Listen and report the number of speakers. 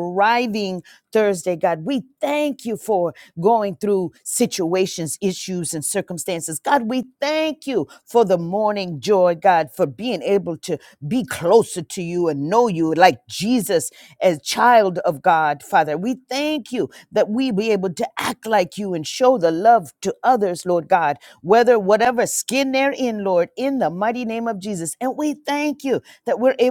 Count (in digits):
1